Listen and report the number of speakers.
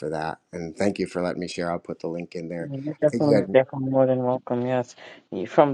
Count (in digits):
2